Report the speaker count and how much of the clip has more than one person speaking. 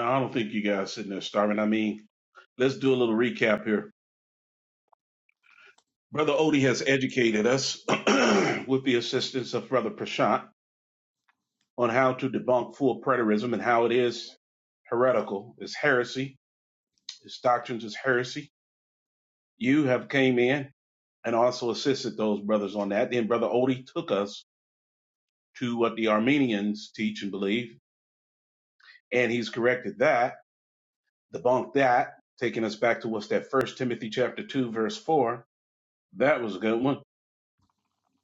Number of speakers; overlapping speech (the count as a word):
one, no overlap